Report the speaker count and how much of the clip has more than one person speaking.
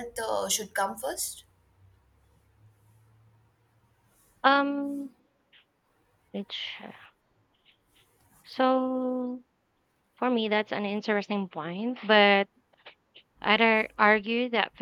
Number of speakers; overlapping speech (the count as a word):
two, no overlap